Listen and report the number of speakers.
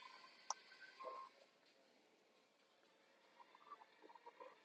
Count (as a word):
zero